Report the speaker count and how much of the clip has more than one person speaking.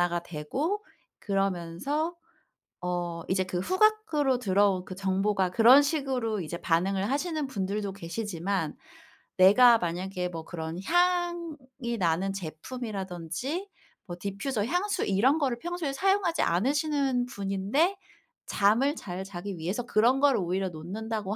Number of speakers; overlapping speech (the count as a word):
one, no overlap